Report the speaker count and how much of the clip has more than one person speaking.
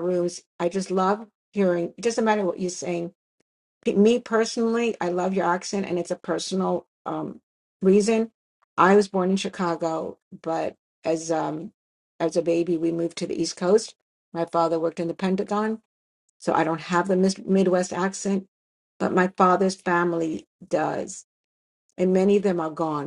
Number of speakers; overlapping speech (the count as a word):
one, no overlap